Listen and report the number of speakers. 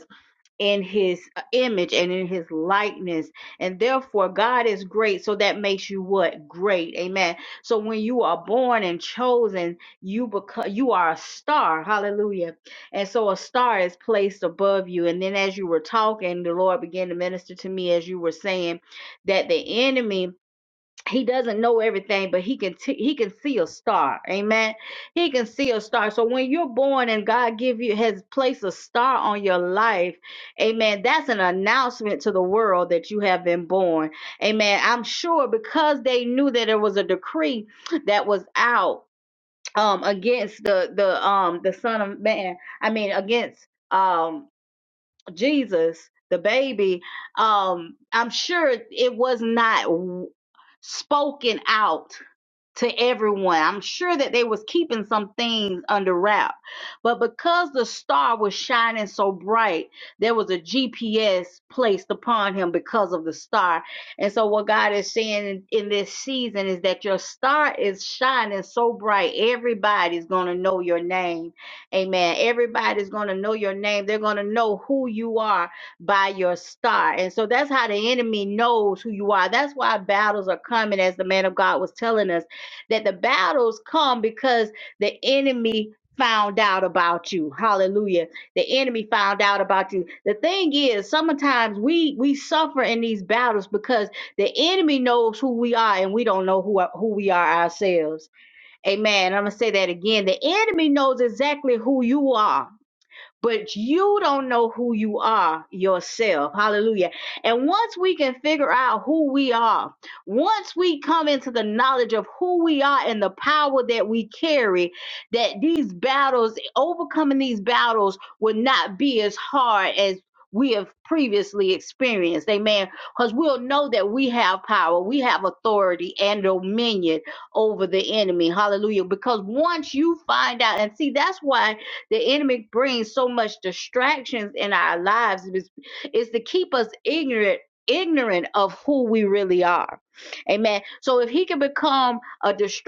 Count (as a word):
one